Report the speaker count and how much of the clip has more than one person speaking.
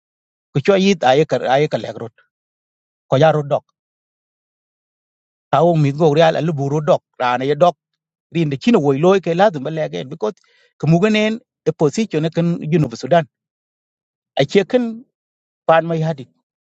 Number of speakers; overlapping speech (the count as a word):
one, no overlap